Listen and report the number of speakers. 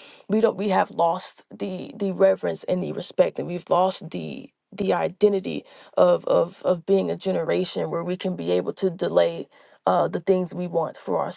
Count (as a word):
one